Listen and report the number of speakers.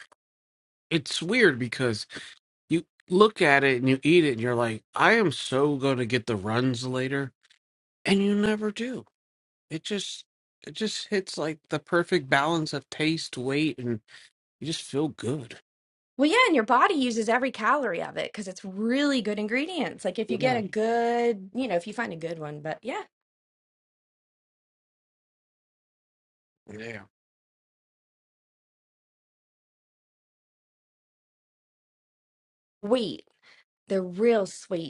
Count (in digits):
2